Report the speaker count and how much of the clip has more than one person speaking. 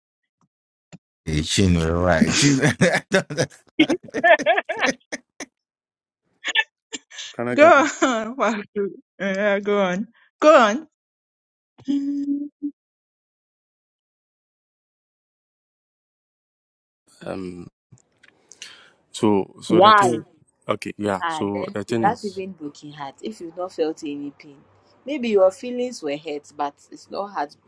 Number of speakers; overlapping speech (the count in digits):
4, about 7%